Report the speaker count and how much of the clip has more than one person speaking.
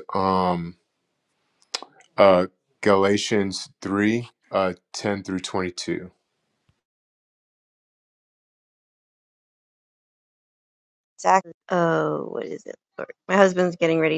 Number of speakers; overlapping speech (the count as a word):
two, no overlap